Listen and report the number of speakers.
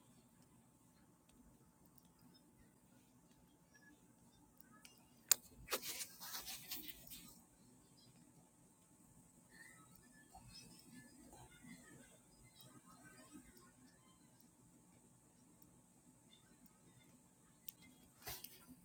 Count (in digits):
0